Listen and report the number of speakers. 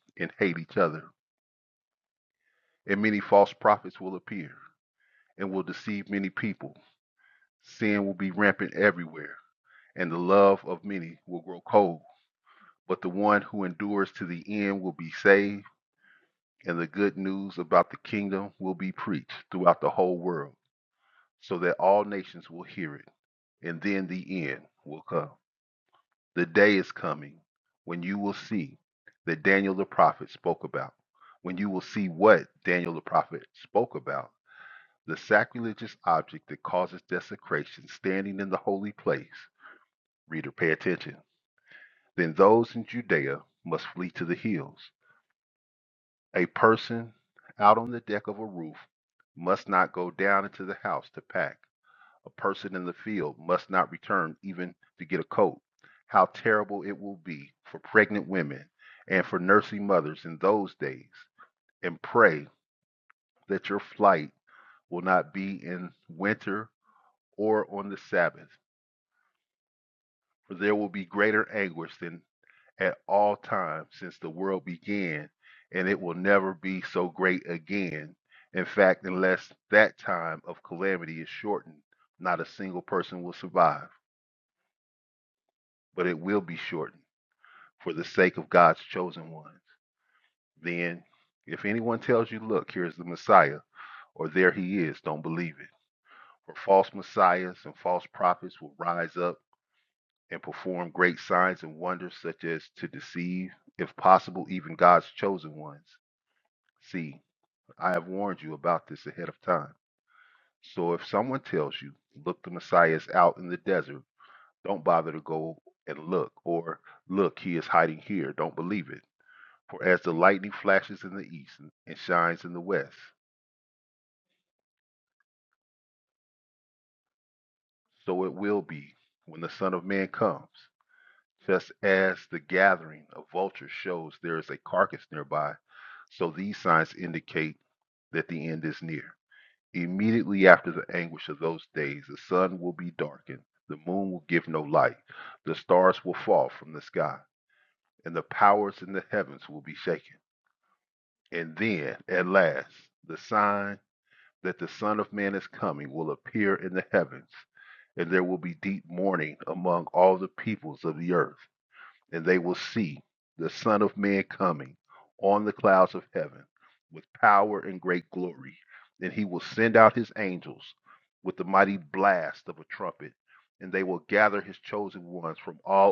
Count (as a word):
one